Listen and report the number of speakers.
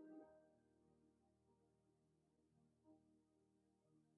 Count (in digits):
0